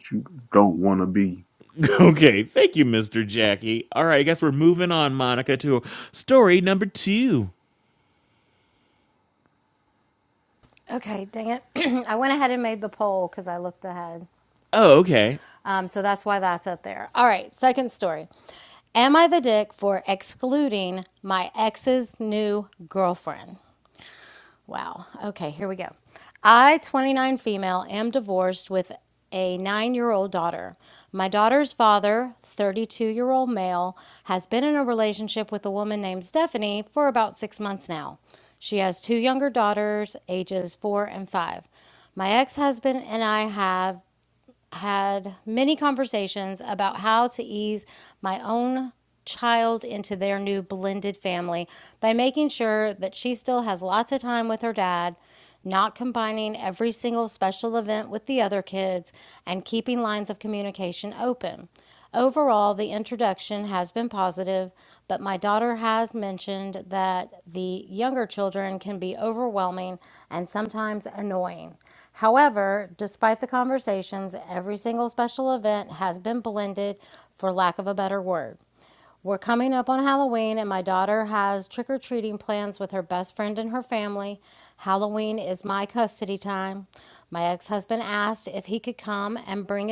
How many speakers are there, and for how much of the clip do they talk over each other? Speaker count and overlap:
3, no overlap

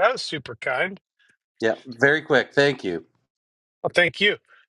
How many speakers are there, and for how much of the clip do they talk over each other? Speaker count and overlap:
2, no overlap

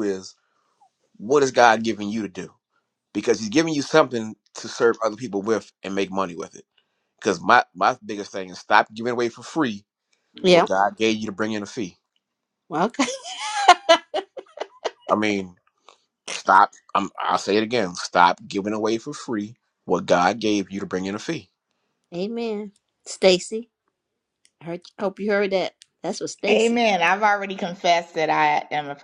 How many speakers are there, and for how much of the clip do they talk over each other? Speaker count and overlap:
3, about 2%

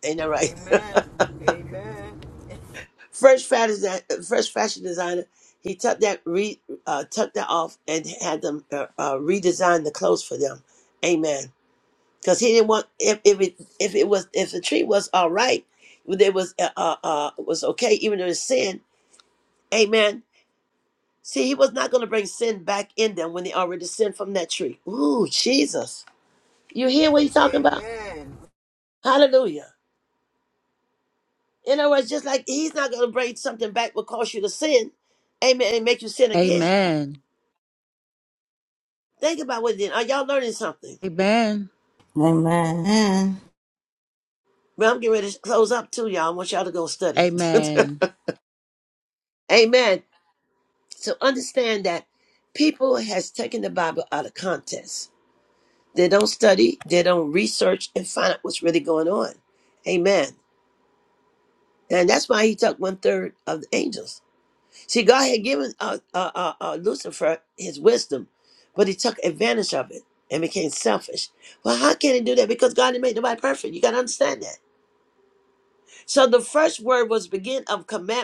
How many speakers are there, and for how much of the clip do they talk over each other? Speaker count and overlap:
4, about 1%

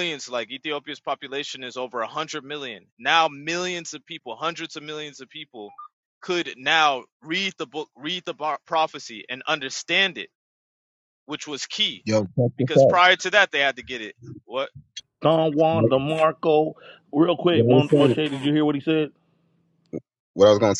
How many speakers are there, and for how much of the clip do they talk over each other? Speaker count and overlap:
3, about 6%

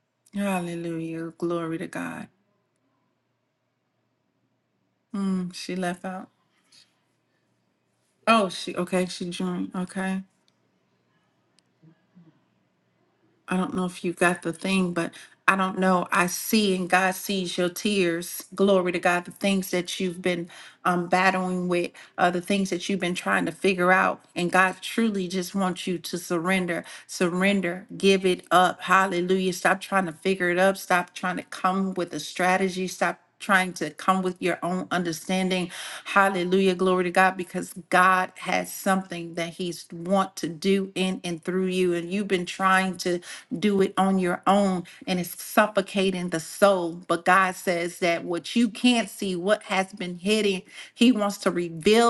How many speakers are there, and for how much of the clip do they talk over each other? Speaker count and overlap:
1, no overlap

